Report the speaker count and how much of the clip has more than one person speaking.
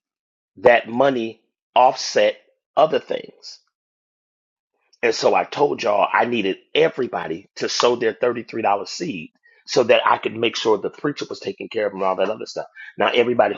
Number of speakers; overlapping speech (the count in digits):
1, no overlap